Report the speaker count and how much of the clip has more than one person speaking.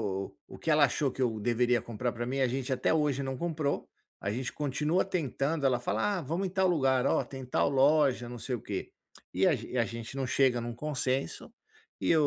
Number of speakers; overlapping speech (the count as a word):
one, no overlap